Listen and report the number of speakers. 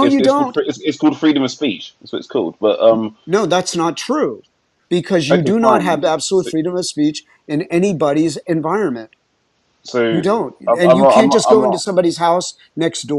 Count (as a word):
two